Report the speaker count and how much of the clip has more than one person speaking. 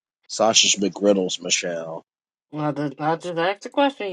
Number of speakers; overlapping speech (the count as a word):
two, no overlap